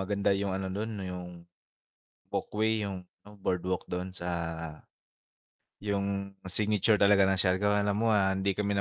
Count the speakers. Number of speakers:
1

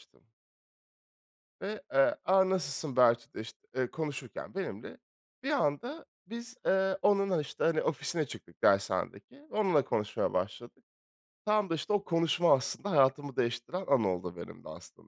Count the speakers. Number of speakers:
1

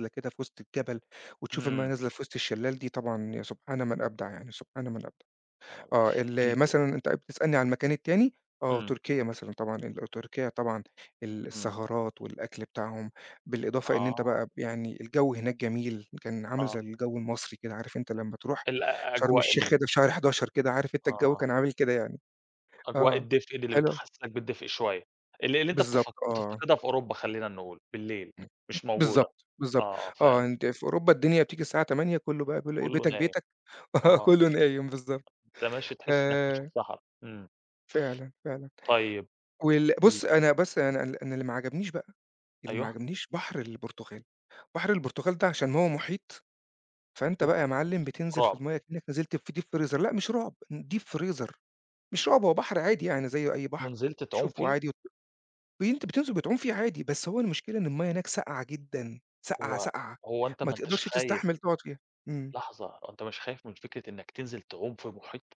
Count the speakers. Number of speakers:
2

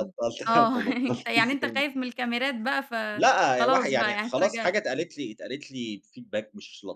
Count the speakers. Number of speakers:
2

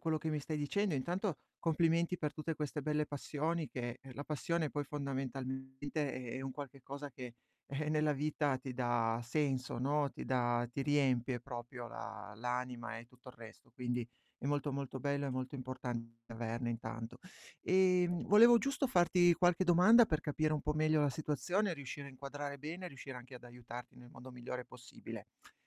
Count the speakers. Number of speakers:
1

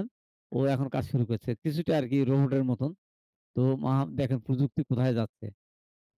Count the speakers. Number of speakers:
1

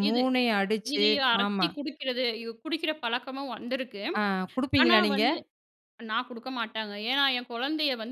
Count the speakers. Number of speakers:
2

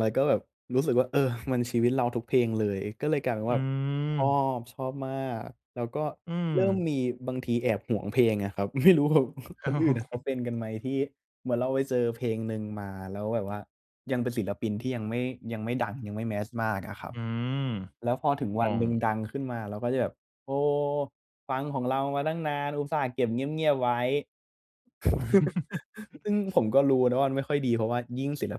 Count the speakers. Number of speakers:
2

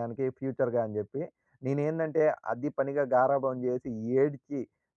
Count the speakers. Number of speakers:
1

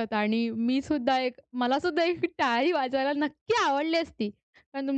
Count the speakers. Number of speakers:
1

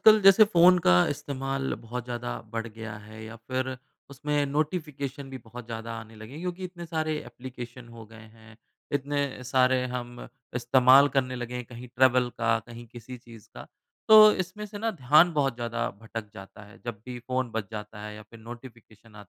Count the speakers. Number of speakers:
1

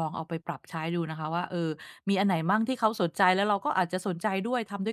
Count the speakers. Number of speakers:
1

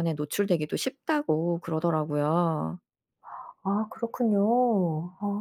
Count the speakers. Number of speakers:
2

